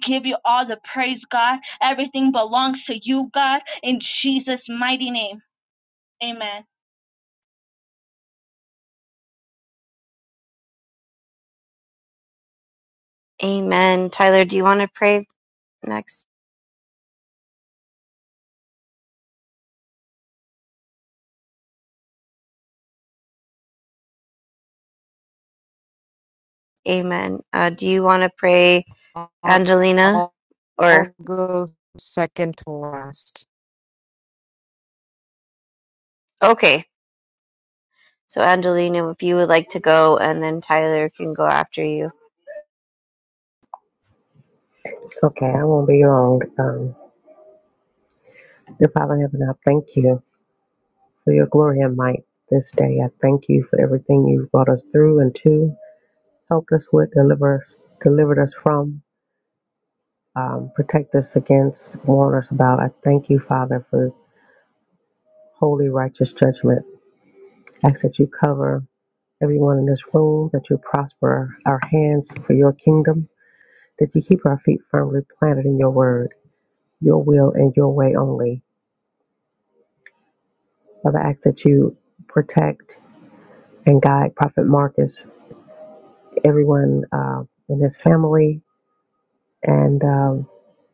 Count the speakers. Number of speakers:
four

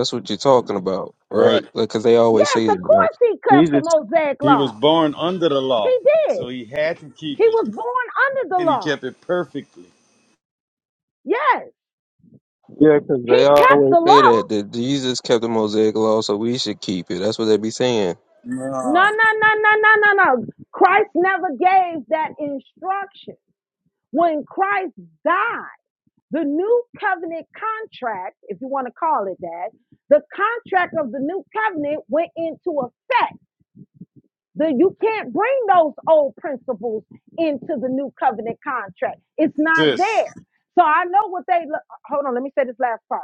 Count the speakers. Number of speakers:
three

